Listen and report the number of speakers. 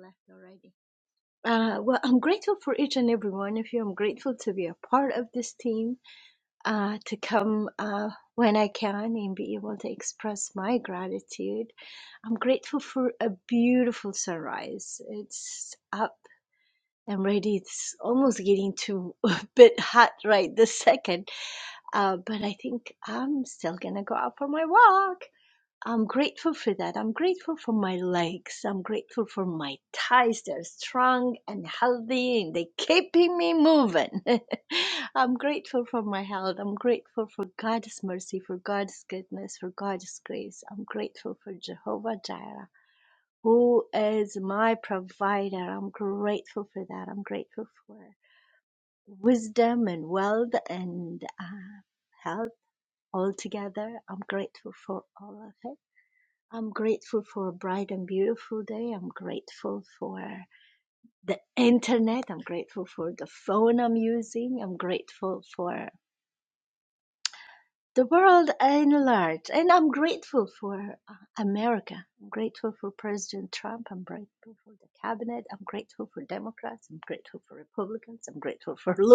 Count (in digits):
1